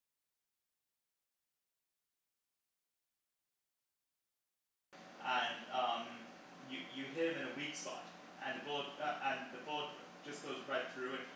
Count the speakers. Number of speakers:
1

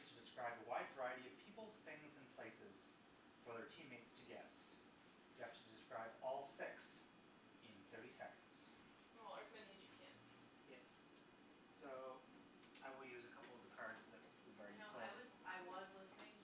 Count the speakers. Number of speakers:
3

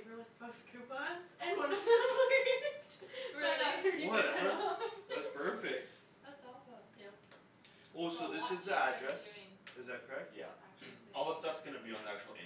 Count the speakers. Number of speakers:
4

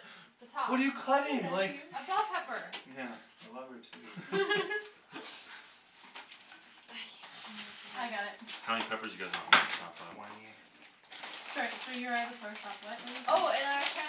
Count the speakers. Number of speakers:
4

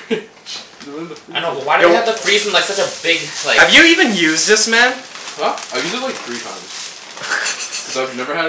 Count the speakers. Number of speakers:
3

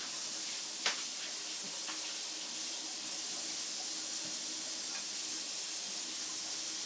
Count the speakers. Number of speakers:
0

